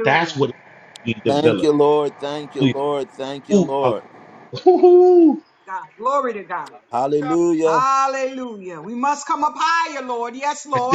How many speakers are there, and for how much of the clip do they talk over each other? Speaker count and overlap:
three, about 18%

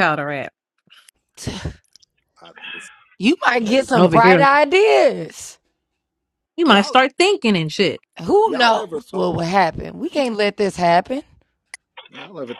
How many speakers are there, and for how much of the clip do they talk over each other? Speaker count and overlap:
three, about 15%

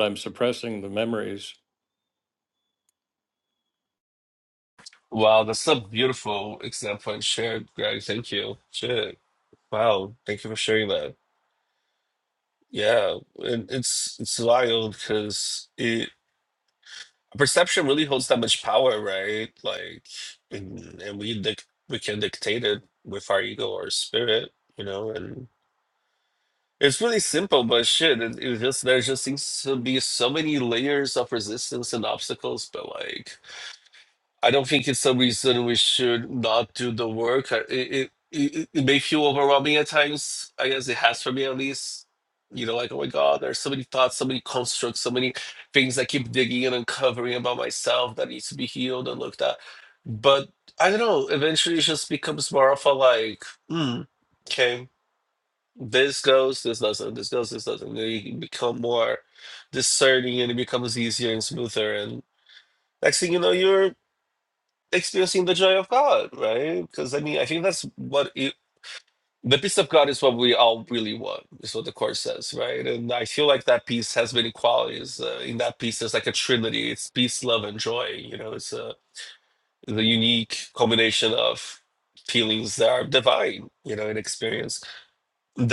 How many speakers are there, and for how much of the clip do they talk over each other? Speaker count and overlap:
two, no overlap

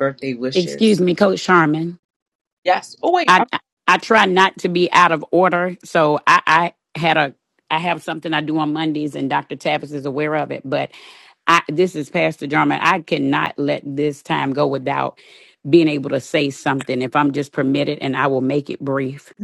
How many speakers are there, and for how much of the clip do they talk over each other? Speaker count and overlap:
two, about 2%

